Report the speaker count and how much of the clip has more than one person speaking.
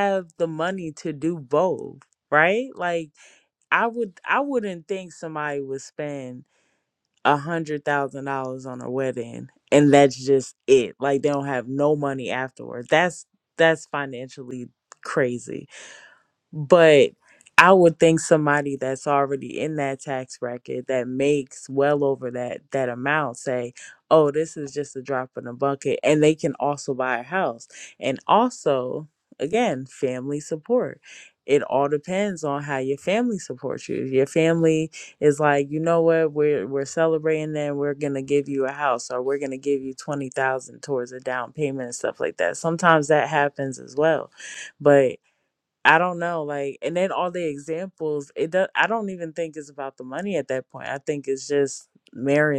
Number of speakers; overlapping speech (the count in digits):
1, no overlap